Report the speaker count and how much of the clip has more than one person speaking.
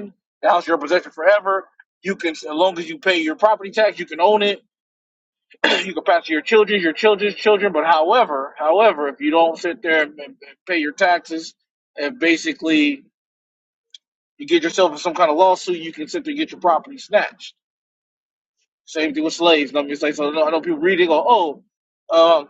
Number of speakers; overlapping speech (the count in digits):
1, no overlap